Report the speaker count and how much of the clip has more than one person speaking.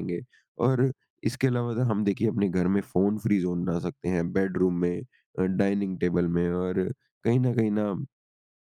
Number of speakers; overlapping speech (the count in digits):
1, no overlap